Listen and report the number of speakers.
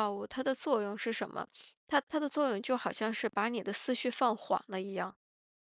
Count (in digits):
1